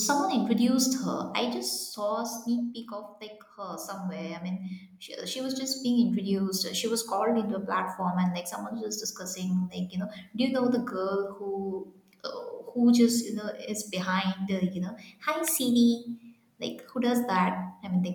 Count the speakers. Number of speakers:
one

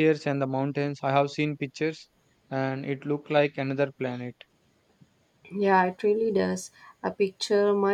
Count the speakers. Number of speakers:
two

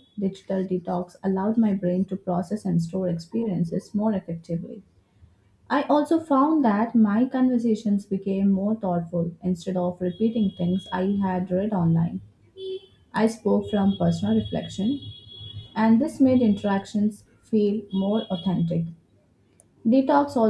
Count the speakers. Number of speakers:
one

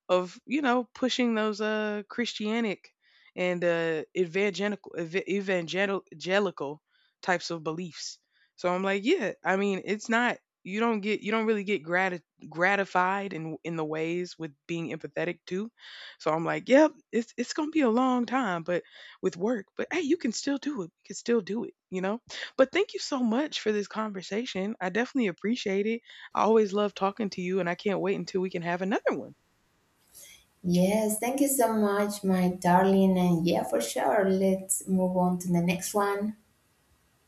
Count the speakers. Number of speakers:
two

